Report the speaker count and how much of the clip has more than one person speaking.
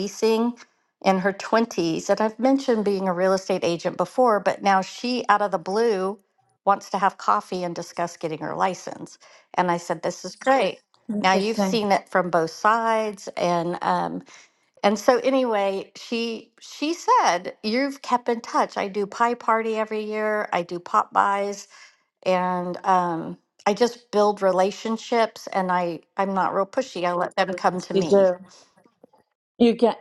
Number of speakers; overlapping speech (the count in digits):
2, about 4%